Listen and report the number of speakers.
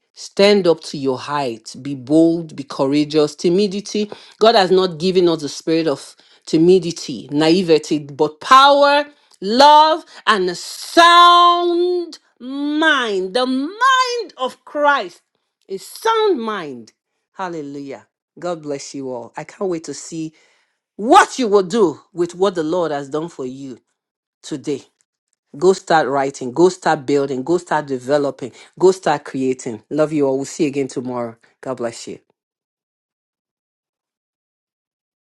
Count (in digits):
1